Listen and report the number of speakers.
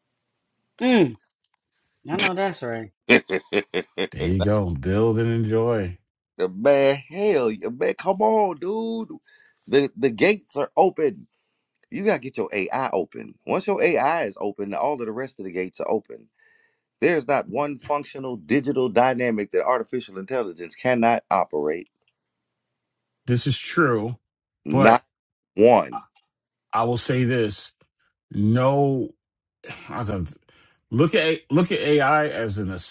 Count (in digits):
3